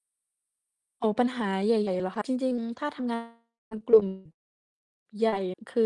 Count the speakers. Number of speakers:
1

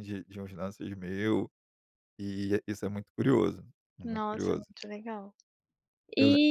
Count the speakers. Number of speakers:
2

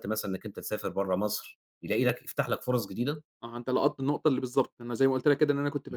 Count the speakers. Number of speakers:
2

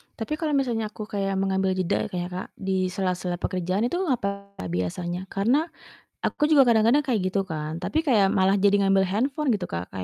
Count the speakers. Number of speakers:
1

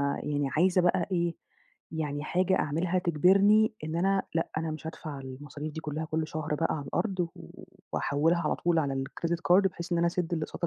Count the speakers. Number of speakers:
1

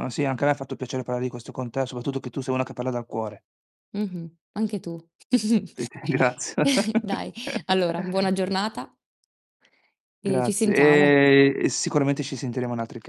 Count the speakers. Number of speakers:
2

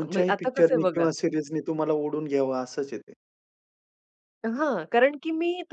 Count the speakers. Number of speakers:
2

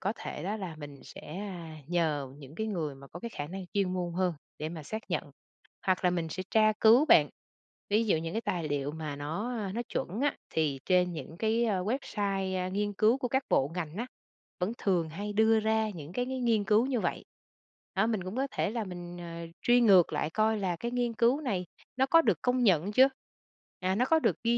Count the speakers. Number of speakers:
1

